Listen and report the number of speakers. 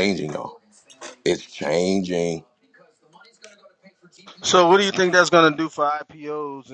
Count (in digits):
2